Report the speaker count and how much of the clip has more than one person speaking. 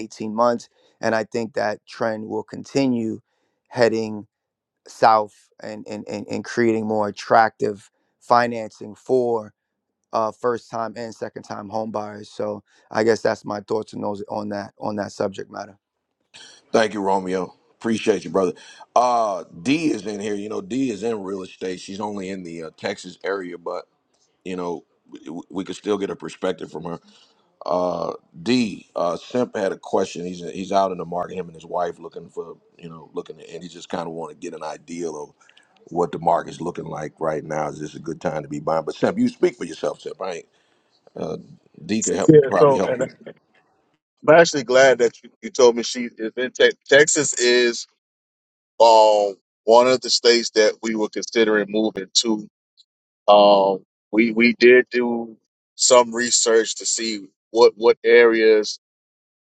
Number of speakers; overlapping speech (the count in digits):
3, about 1%